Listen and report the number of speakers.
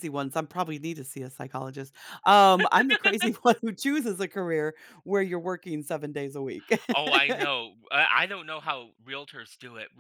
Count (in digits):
2